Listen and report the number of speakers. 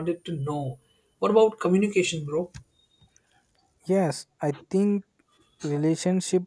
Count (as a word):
two